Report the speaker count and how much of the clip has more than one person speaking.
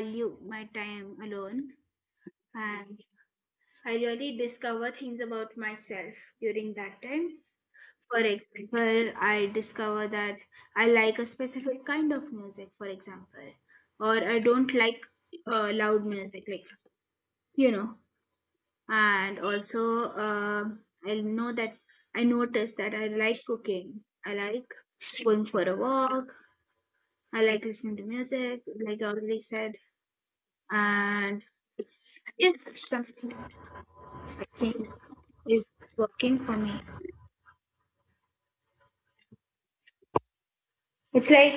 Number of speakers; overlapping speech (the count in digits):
1, no overlap